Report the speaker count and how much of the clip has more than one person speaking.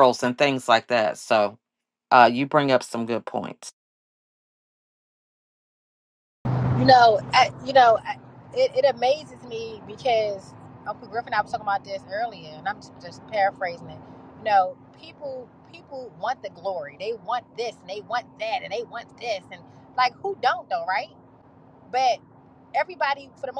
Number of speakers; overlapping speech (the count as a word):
two, no overlap